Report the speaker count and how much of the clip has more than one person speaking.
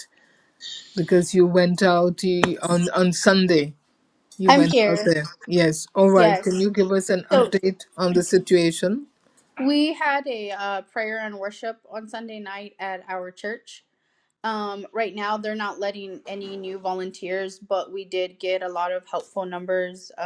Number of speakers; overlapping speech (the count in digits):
2, about 7%